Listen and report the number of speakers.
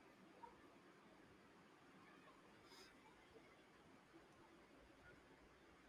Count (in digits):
0